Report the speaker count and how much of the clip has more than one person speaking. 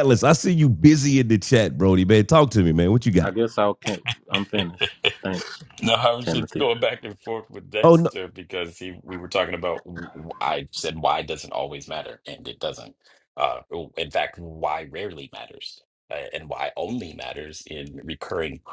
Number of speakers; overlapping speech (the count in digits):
3, about 4%